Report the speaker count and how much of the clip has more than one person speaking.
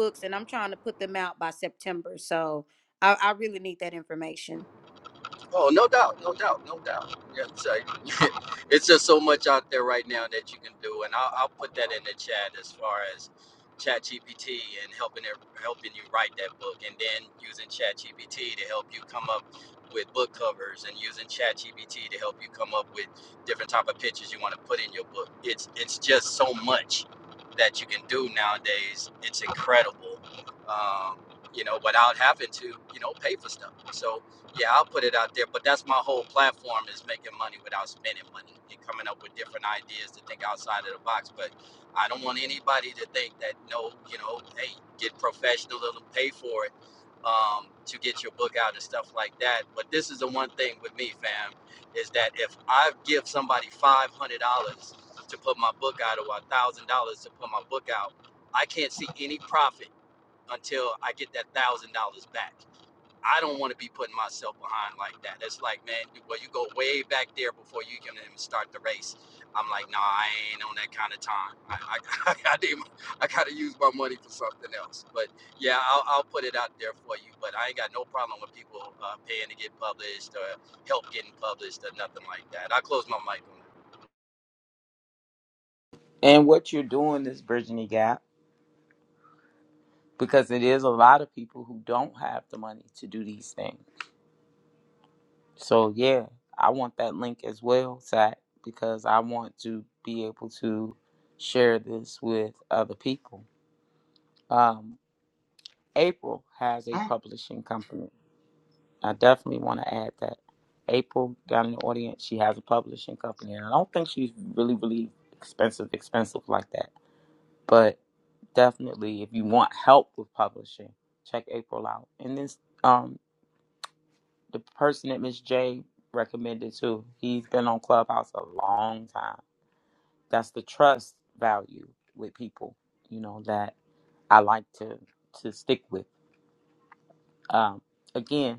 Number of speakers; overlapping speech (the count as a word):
three, no overlap